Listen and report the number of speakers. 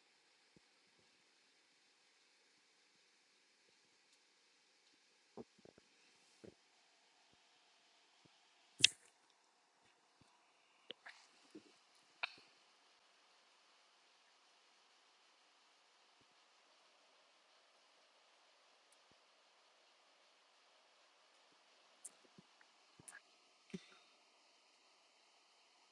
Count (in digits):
0